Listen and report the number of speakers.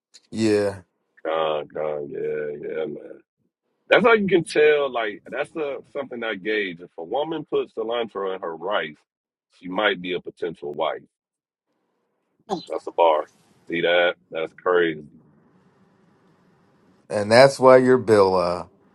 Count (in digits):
2